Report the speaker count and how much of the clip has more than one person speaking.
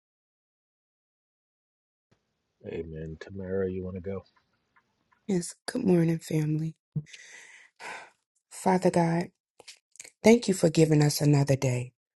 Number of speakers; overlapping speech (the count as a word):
two, no overlap